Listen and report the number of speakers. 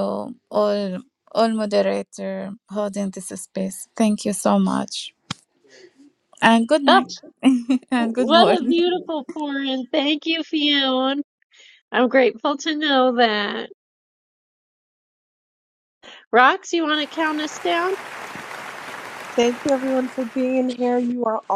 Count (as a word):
three